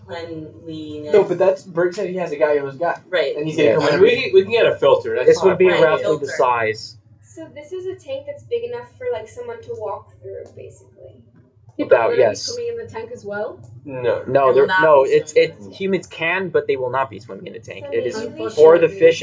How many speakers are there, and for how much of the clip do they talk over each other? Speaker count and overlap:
six, about 31%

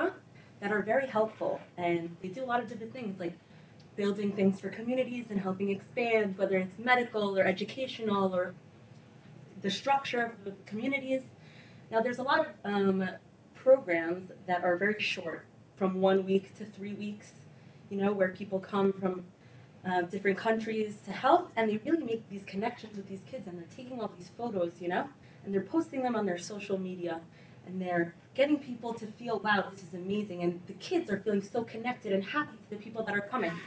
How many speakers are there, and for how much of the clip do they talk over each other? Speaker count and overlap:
one, no overlap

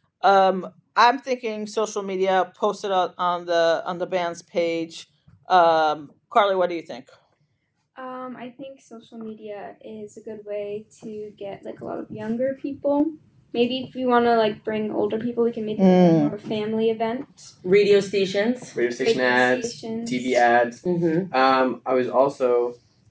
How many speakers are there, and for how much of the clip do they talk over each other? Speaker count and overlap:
four, about 4%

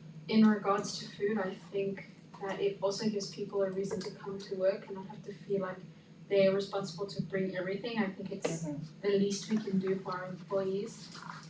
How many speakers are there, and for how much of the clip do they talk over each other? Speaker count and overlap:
one, no overlap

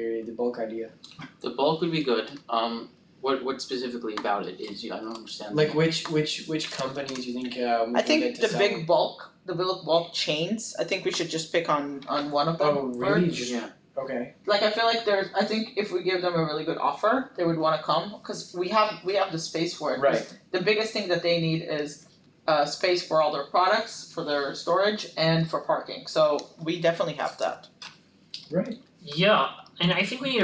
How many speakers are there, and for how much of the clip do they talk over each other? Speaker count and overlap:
four, about 8%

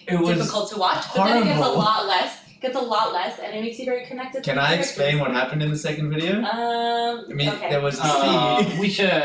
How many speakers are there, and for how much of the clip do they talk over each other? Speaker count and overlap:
three, about 36%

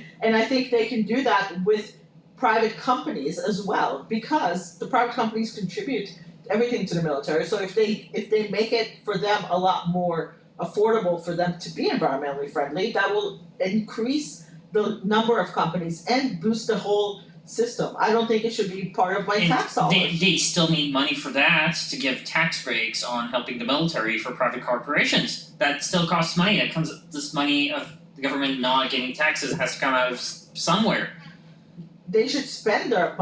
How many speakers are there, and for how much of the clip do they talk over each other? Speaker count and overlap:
two, about 2%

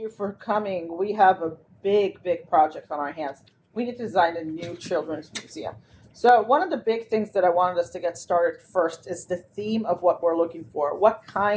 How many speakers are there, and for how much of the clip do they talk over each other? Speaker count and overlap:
one, no overlap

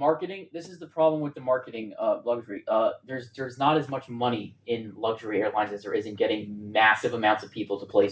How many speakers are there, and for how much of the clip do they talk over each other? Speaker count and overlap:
one, no overlap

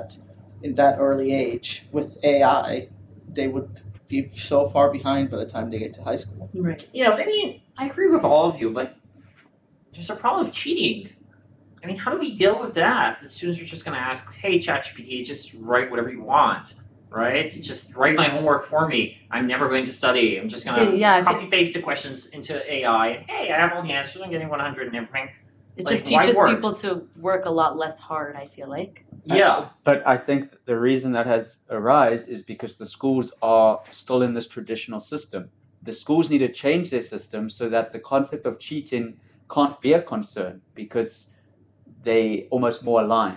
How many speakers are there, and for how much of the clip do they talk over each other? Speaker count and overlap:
four, about 5%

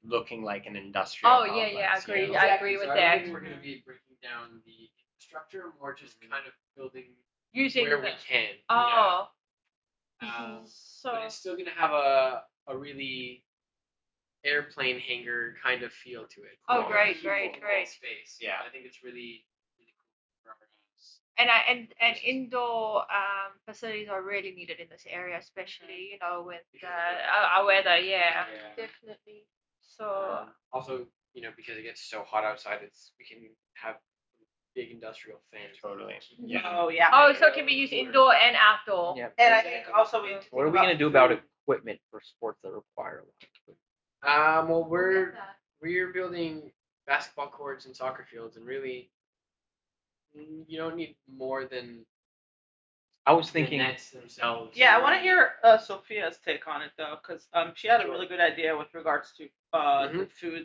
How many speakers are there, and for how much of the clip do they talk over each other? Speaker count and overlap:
six, about 28%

